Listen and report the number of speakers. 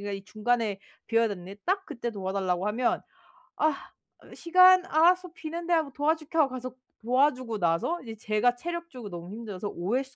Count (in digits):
1